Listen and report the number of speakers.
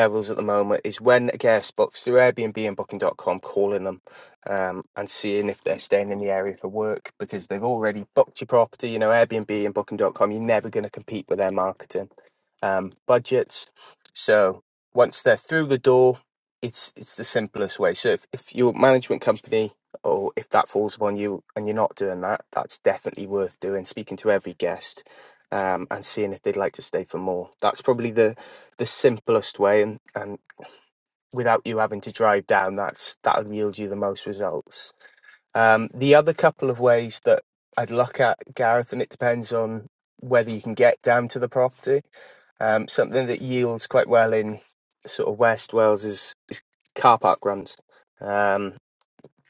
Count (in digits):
1